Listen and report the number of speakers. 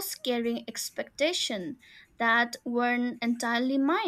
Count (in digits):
1